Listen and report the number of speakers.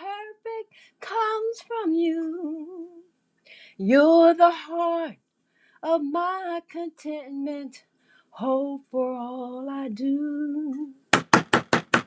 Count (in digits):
1